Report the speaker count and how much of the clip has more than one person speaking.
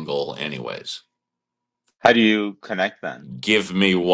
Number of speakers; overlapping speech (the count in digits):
2, no overlap